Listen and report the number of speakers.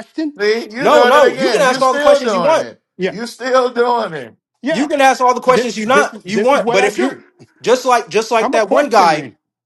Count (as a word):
three